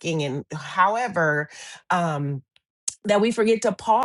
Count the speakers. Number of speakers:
1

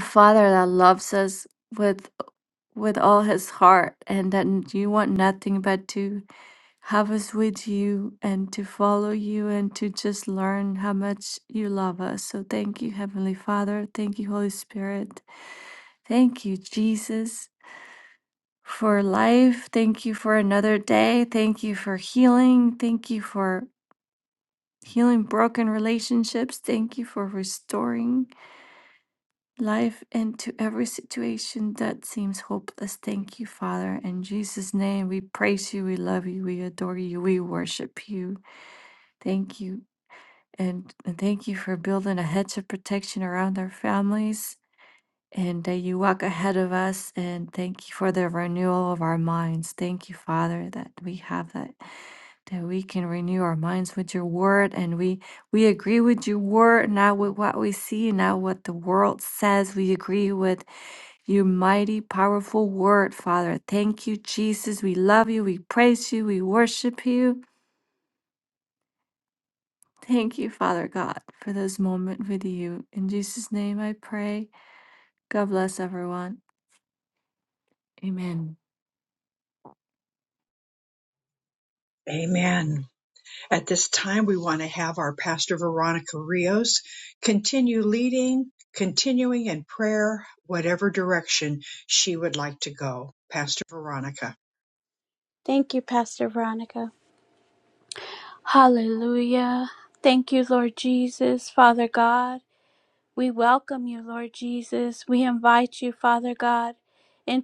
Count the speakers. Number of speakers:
3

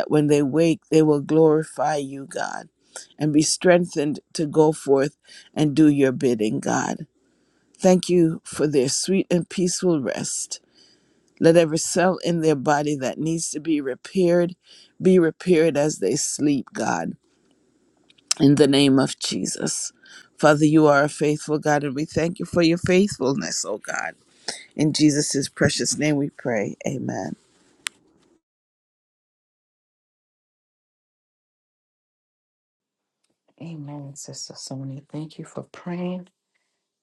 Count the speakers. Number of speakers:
2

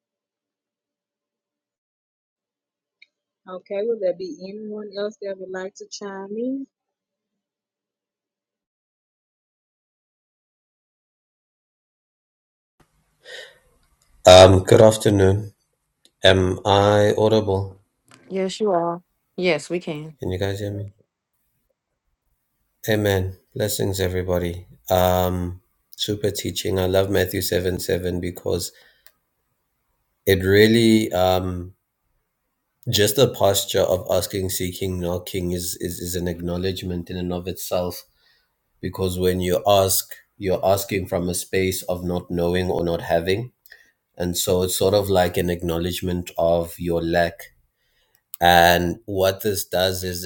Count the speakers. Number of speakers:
3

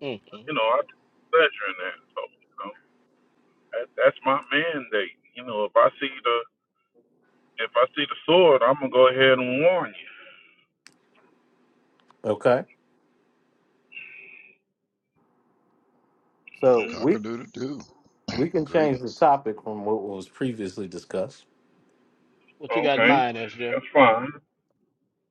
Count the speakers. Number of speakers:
4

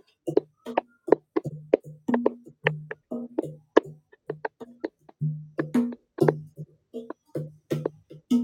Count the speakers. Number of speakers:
0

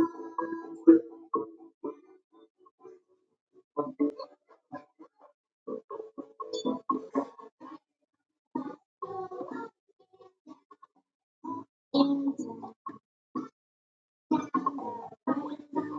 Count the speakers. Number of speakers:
0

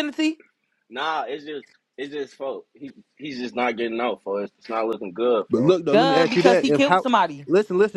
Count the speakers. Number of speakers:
3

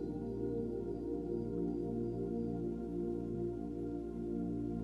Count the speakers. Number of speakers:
0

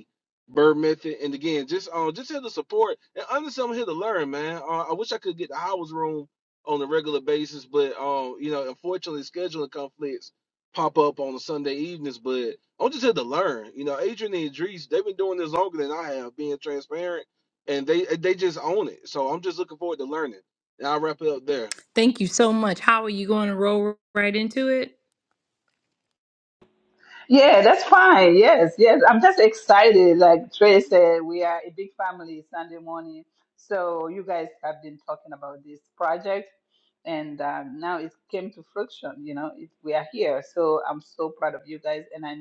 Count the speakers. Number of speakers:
3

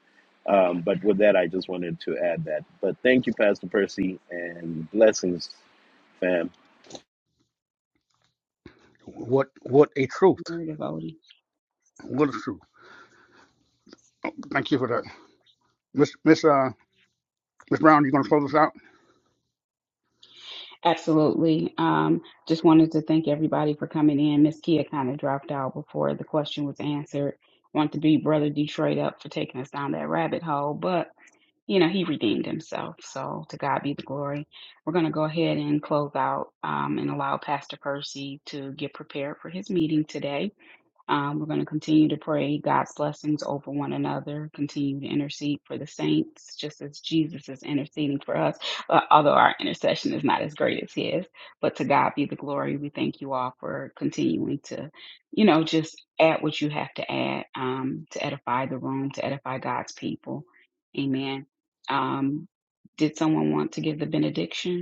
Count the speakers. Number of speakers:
3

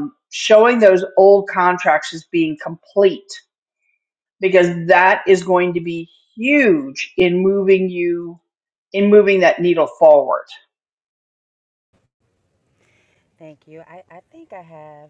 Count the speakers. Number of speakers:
2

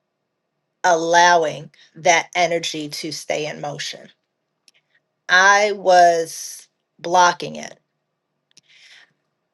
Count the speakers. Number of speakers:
1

